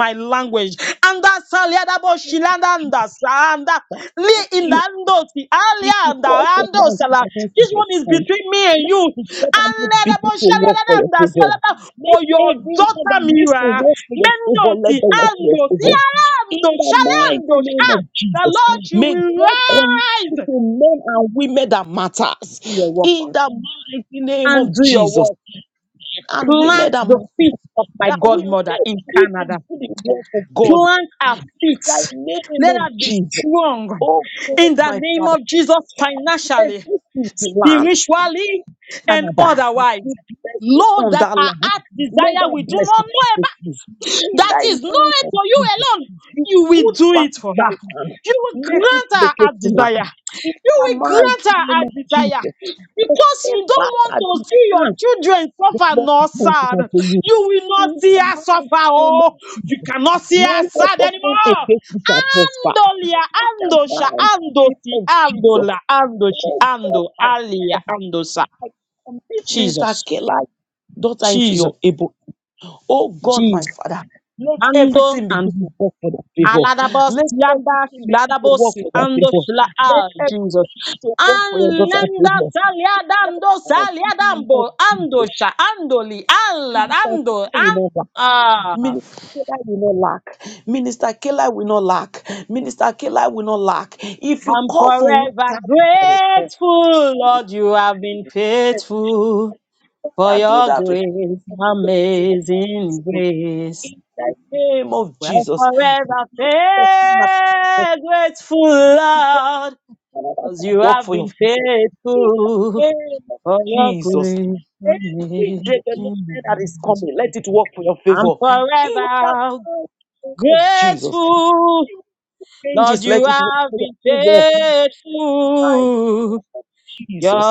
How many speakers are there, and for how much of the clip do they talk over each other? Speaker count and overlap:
2, about 46%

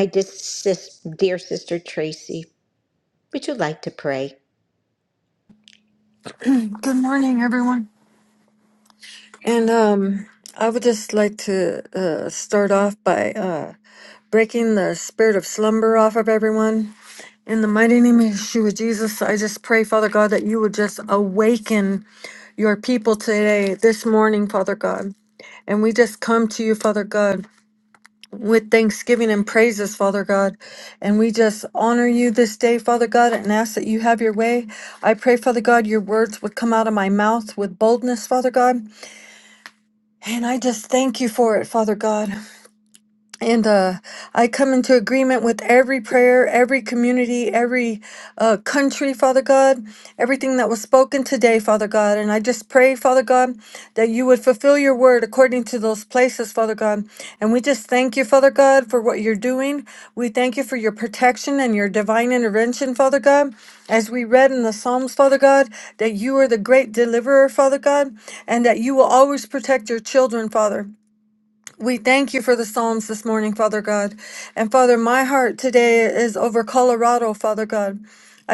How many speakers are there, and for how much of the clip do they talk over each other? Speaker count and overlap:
2, no overlap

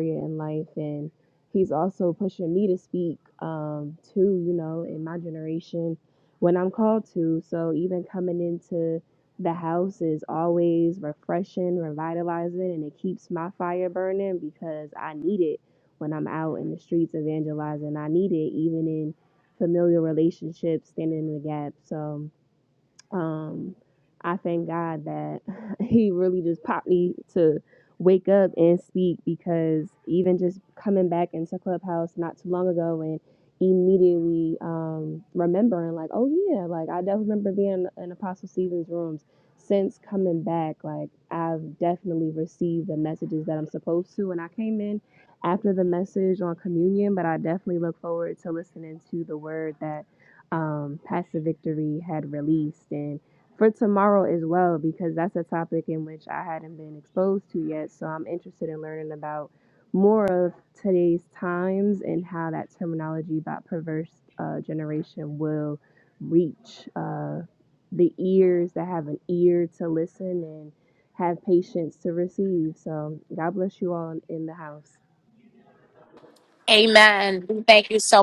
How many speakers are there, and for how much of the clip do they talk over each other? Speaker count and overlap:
2, no overlap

